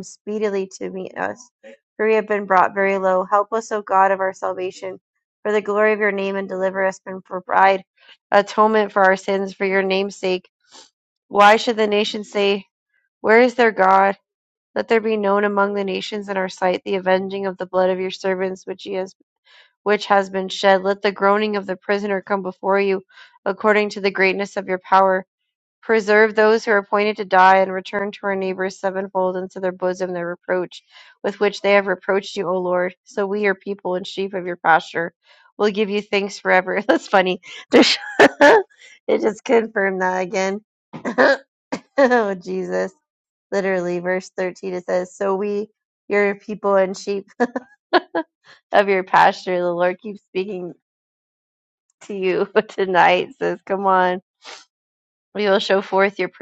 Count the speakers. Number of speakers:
1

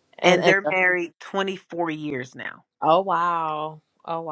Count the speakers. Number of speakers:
2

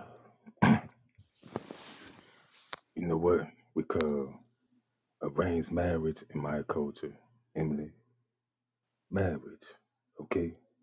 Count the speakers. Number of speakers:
1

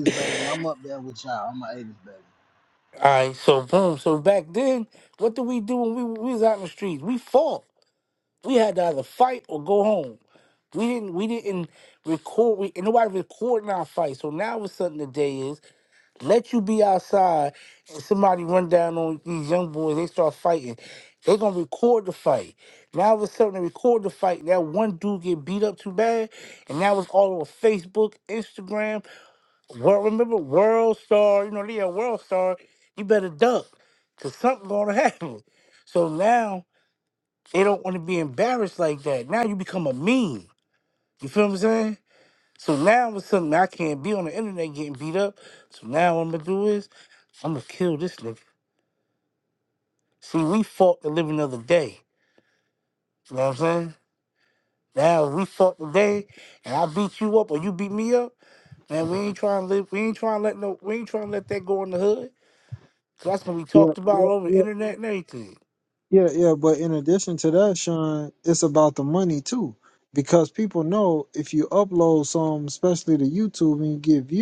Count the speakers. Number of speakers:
3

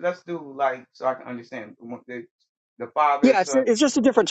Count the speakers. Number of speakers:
2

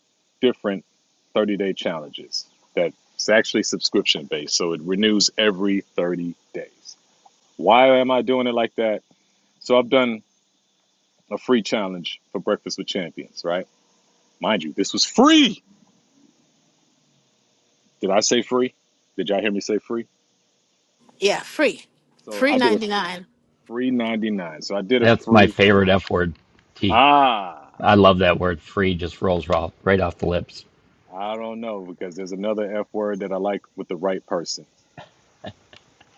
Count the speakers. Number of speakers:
3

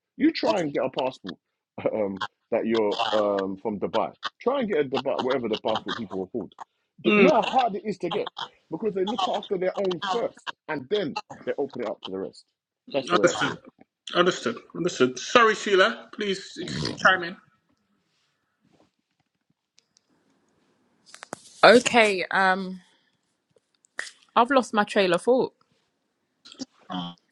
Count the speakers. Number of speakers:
3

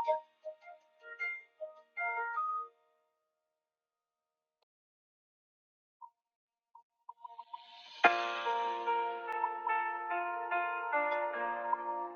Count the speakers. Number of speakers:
0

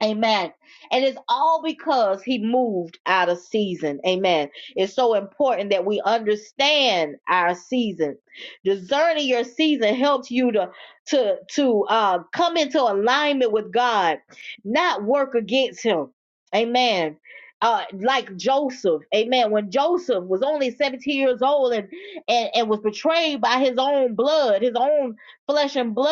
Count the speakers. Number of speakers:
1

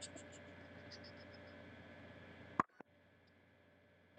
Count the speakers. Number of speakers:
0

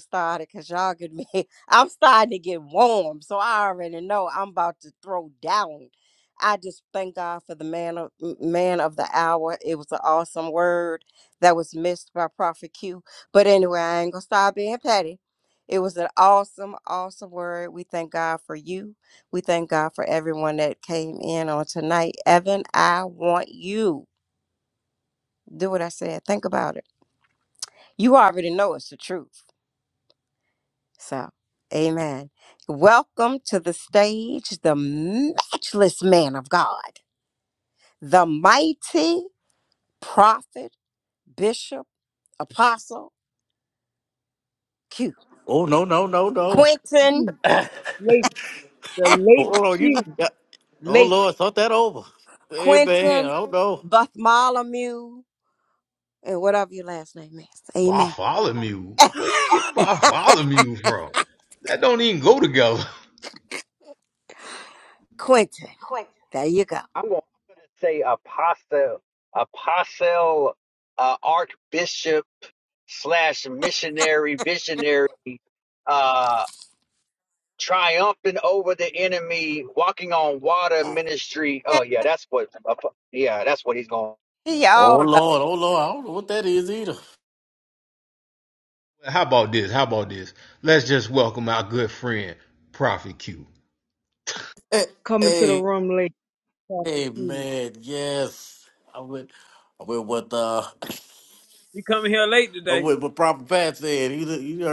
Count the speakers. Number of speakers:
6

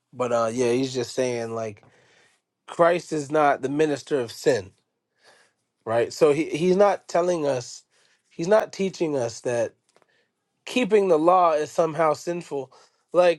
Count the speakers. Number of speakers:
1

